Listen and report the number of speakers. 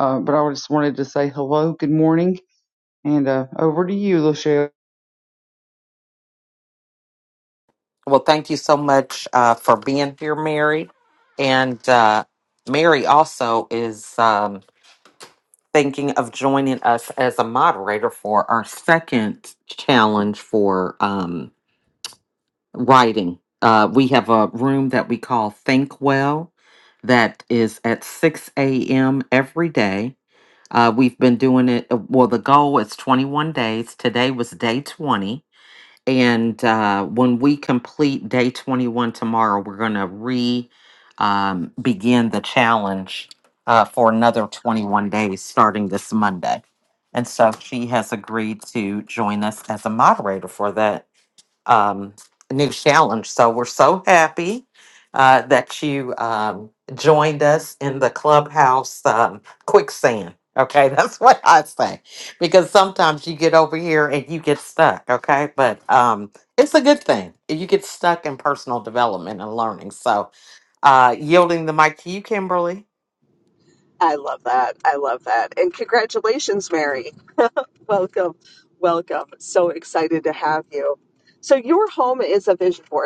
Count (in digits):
3